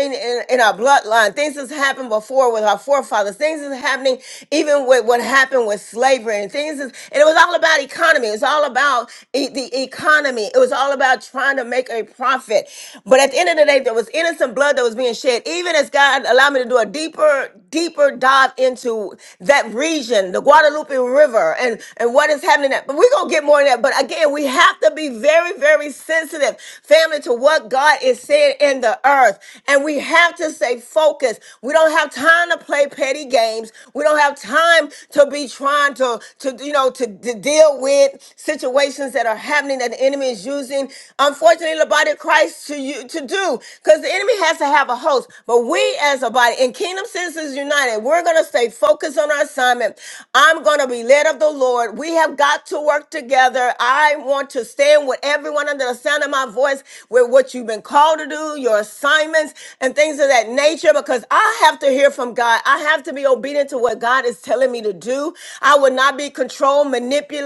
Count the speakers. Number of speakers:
one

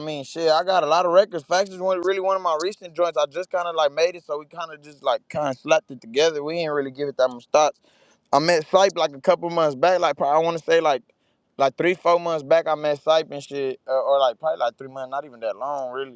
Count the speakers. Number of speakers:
one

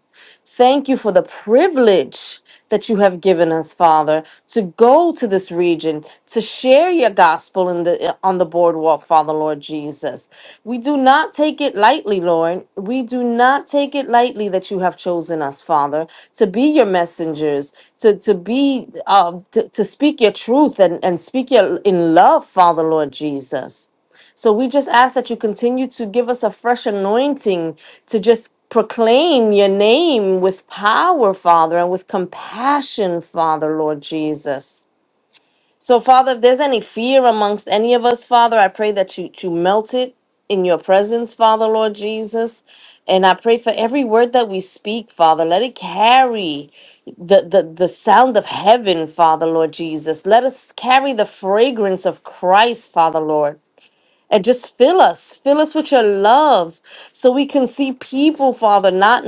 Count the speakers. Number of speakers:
one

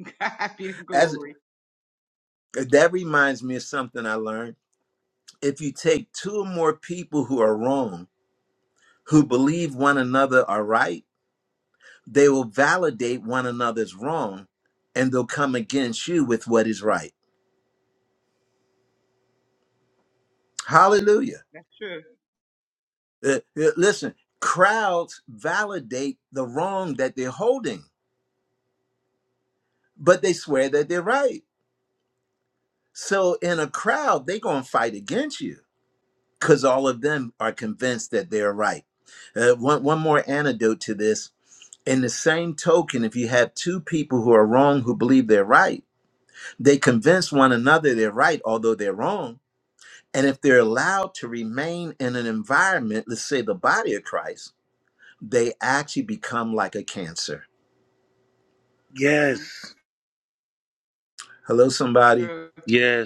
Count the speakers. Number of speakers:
three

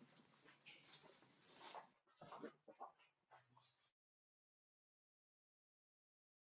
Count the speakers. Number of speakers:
zero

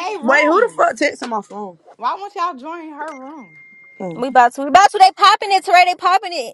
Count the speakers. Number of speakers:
three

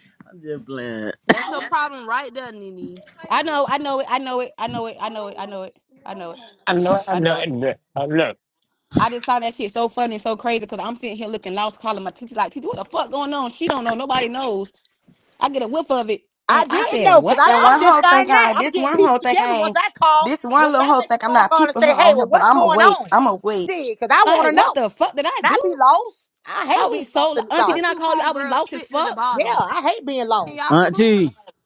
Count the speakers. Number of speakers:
six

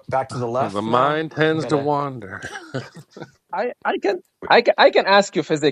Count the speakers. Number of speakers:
three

